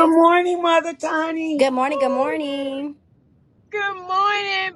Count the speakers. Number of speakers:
3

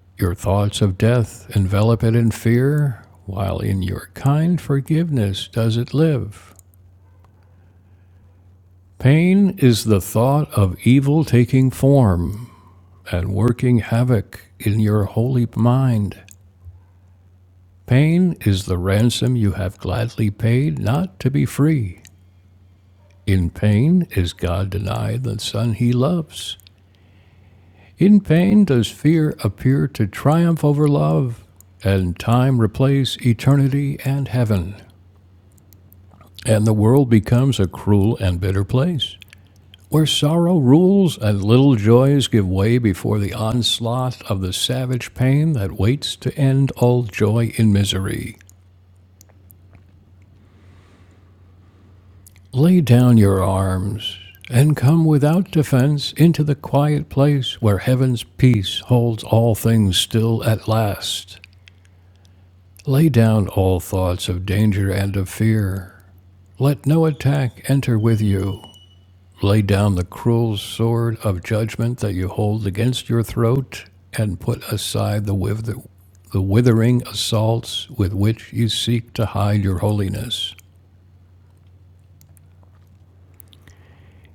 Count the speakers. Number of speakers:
1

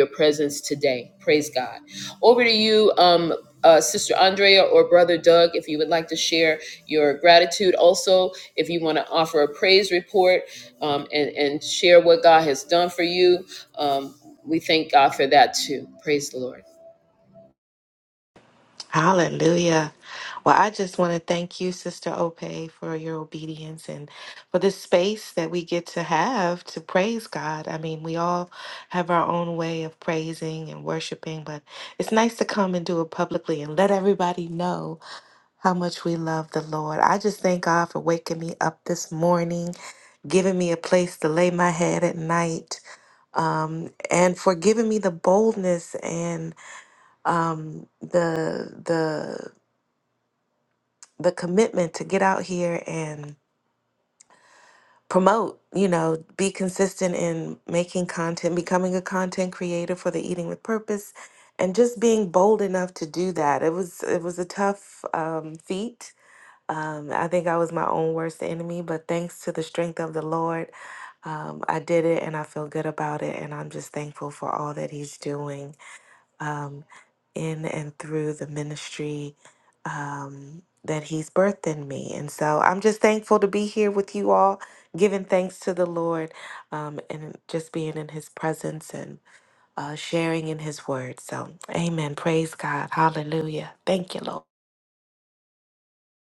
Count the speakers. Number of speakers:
2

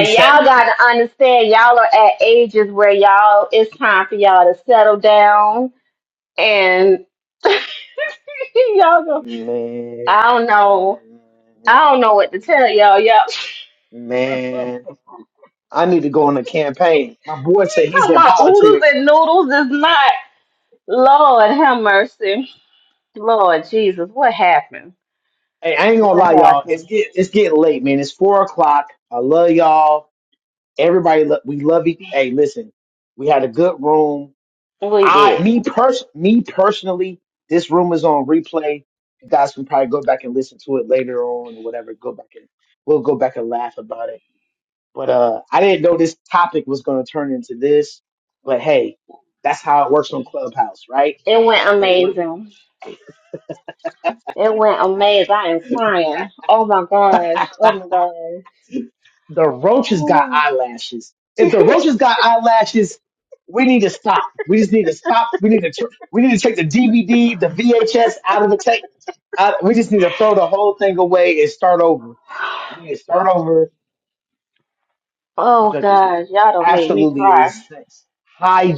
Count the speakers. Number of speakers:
2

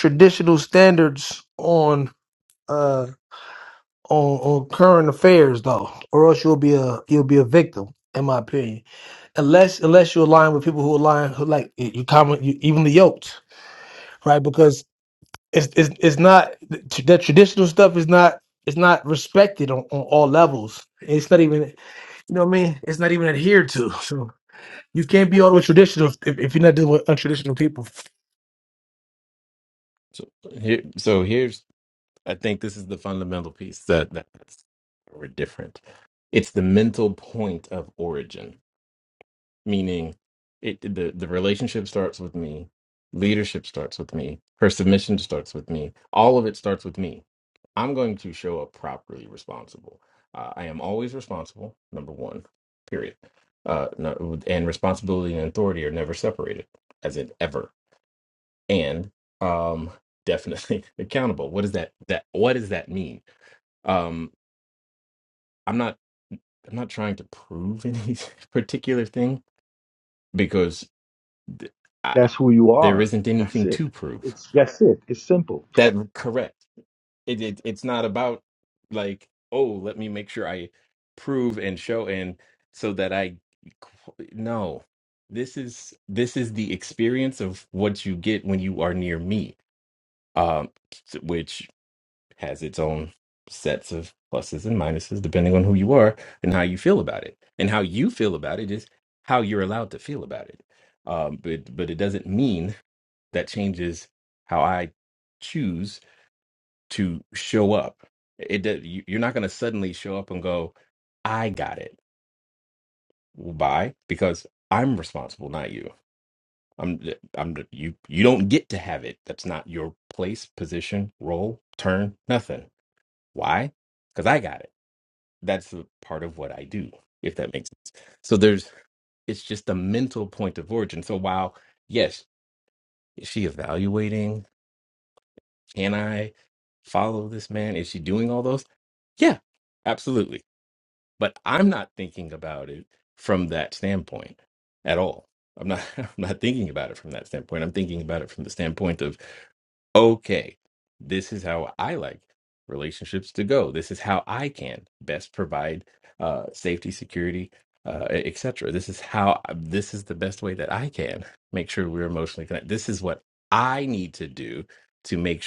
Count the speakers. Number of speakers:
3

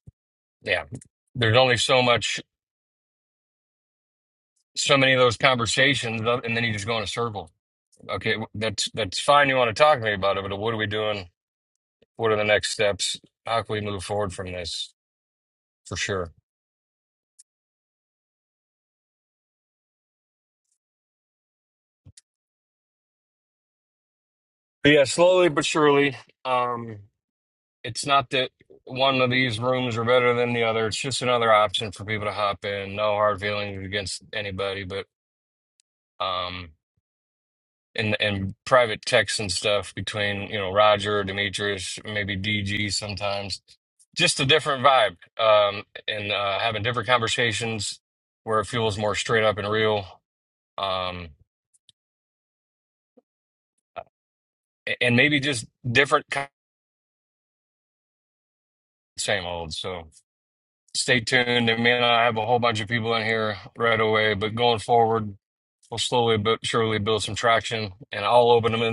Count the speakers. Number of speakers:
1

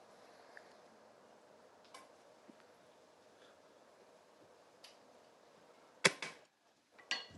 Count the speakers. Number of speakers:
0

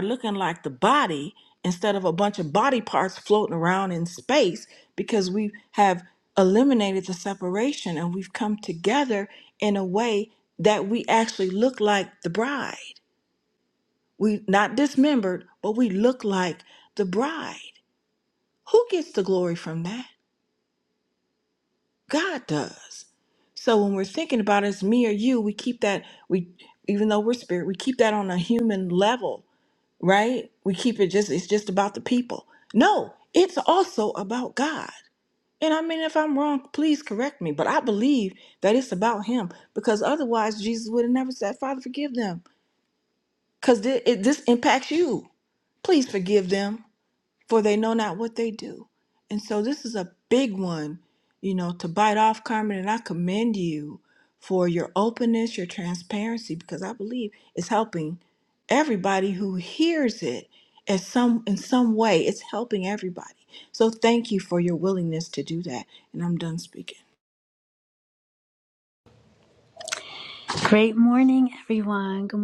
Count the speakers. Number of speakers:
2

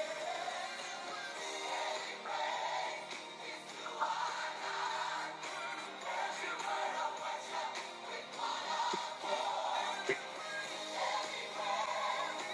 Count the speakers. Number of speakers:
0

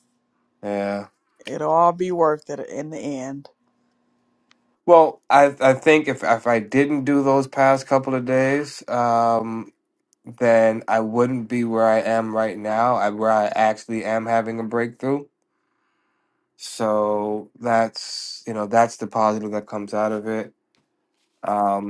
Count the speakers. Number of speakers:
2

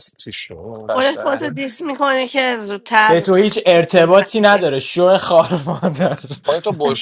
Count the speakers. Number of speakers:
3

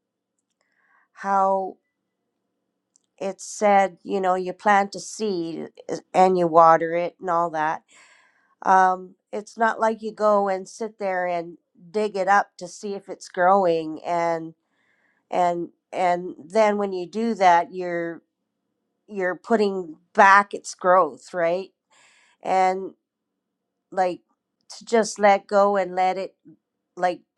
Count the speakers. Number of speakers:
1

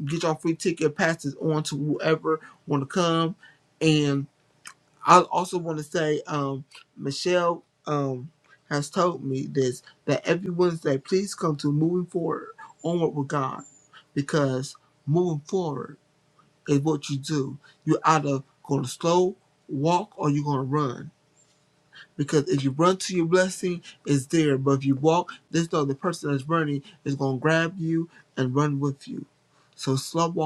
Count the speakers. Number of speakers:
1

